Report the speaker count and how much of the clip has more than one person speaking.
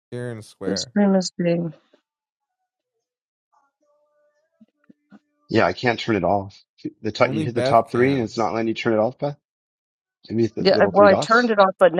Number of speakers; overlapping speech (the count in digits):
3, about 17%